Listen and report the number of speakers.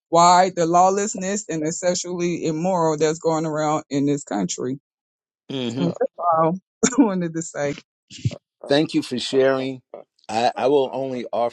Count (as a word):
two